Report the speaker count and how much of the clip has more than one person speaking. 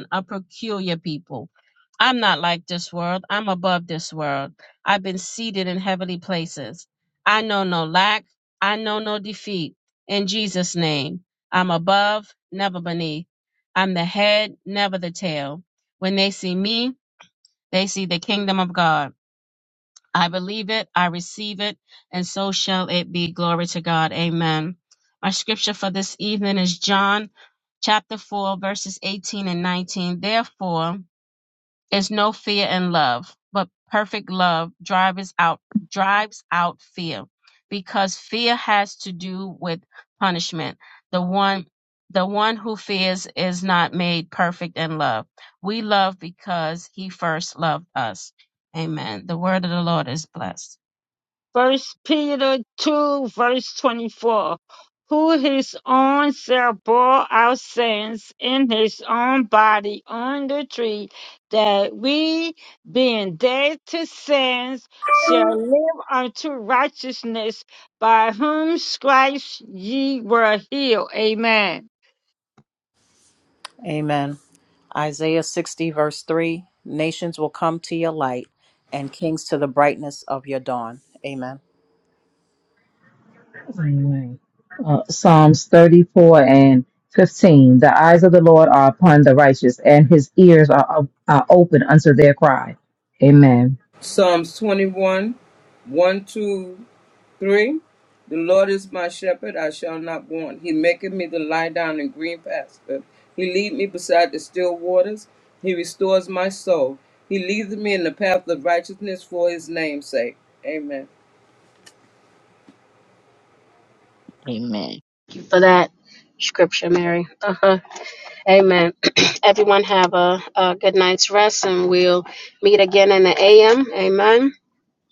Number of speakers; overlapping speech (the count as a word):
five, no overlap